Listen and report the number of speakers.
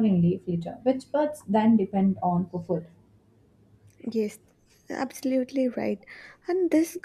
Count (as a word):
two